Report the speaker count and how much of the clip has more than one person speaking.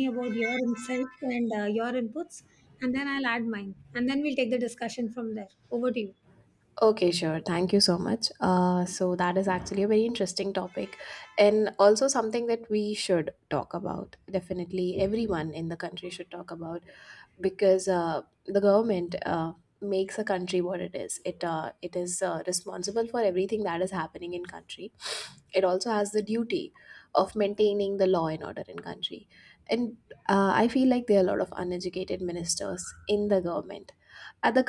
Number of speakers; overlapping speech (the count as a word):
two, no overlap